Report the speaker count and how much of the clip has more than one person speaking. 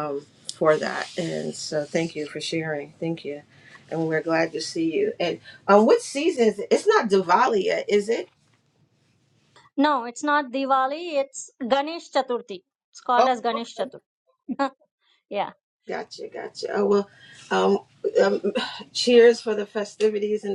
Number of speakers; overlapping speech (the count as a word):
two, about 2%